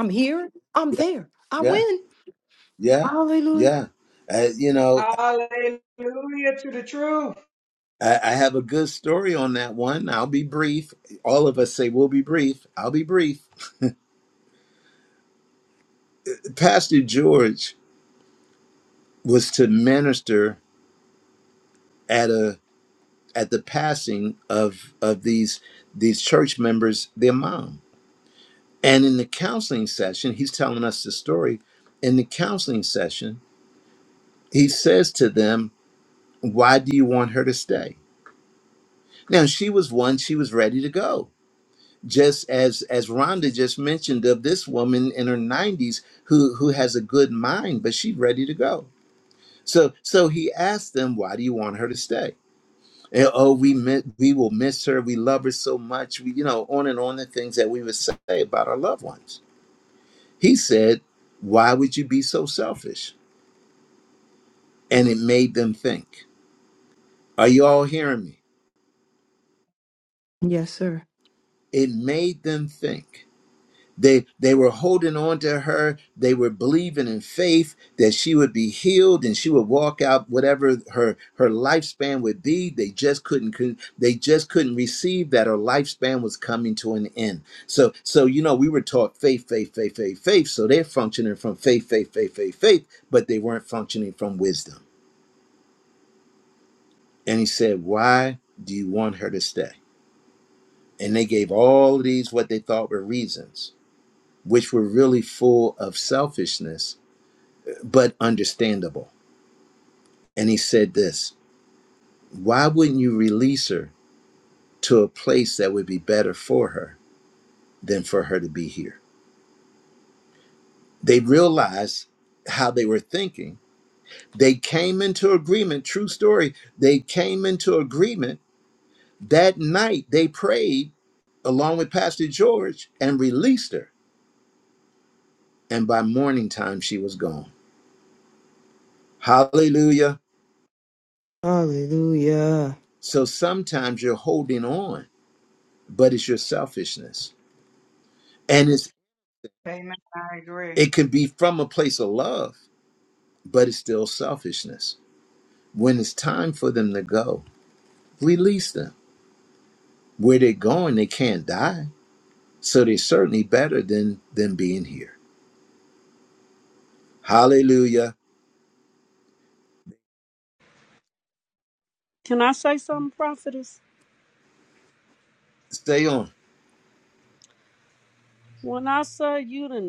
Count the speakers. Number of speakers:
four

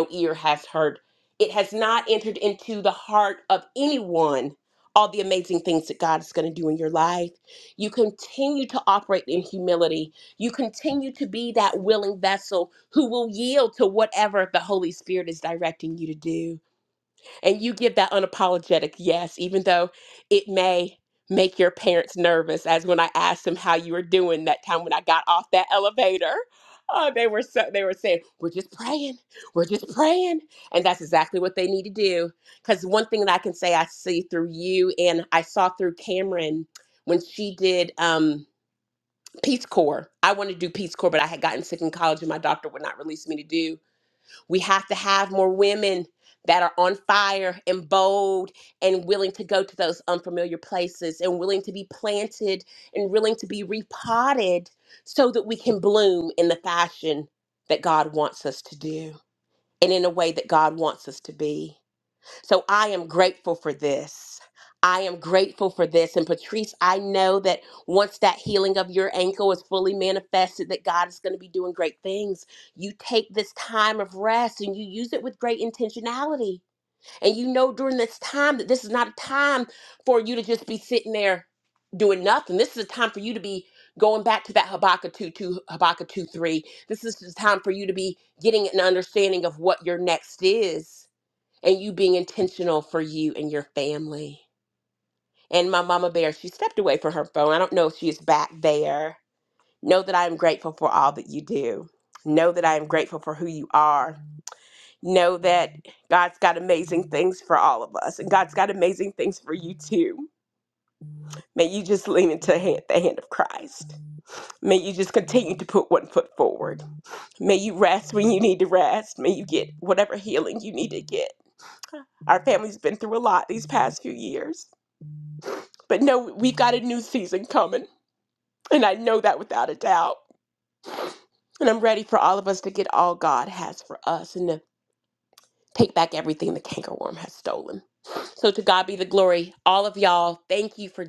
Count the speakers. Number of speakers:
one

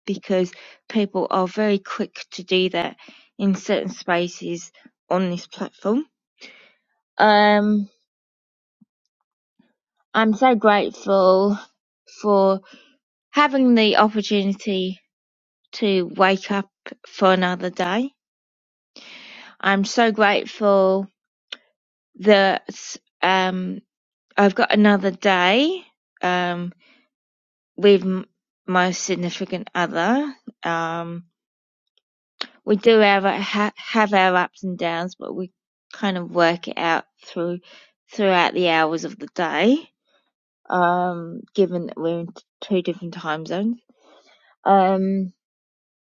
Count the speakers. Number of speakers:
one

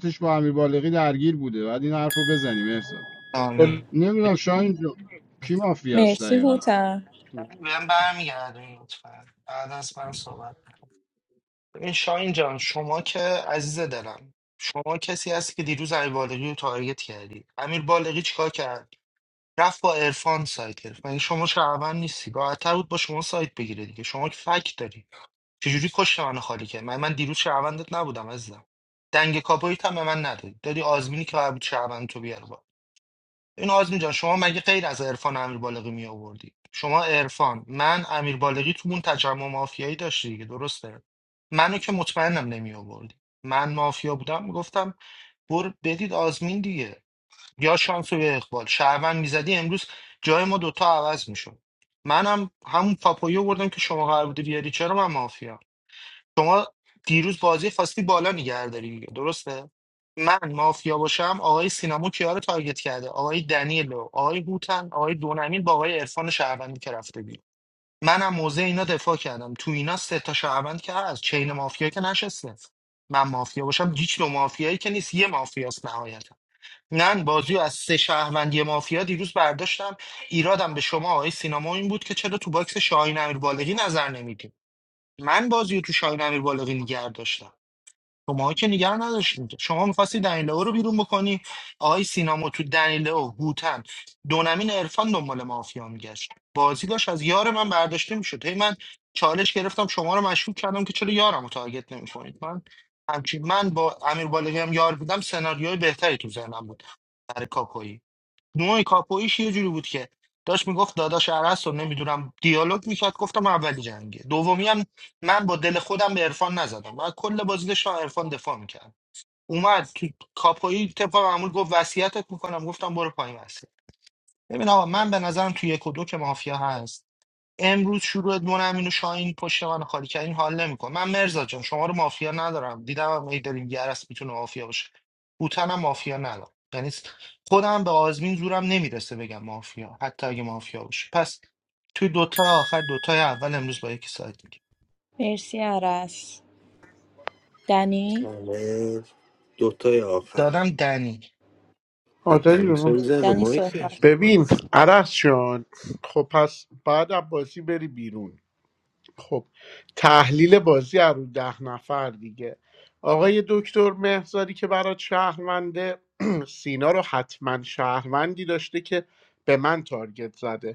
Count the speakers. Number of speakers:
five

